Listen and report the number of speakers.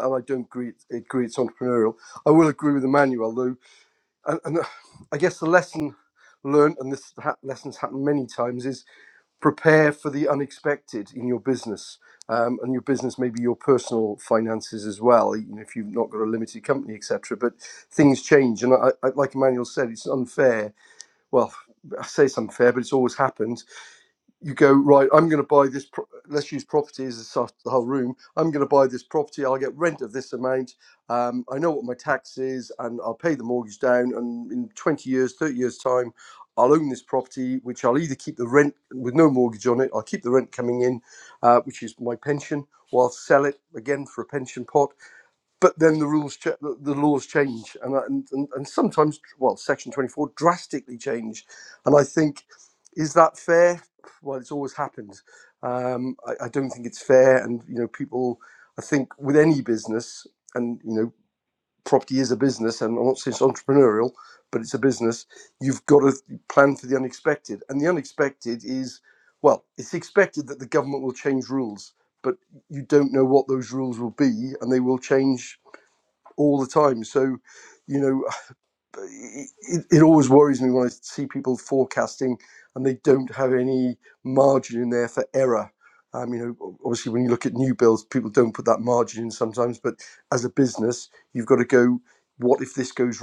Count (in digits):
1